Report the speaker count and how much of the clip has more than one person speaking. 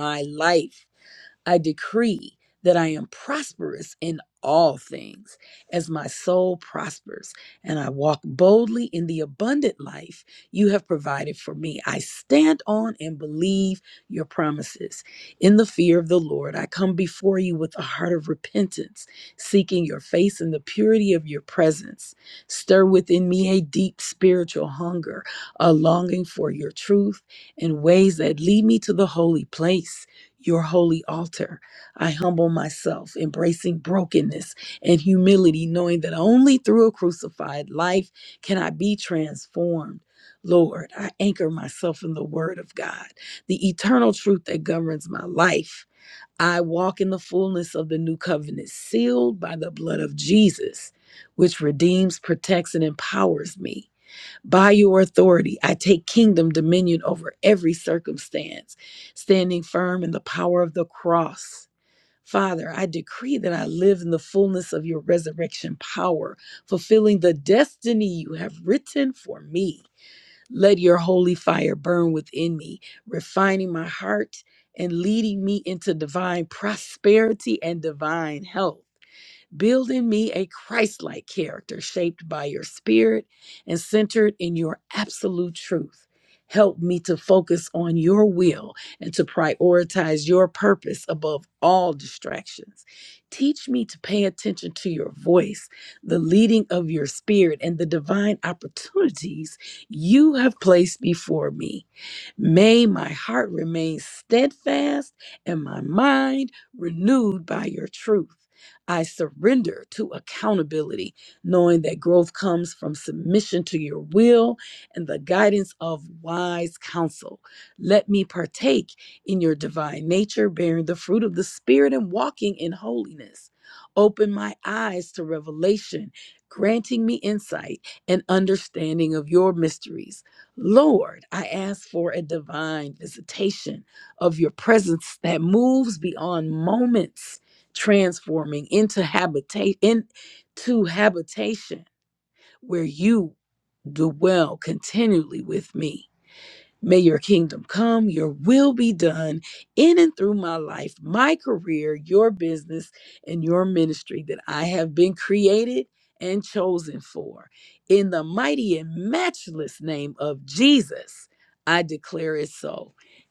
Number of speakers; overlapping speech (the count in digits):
1, no overlap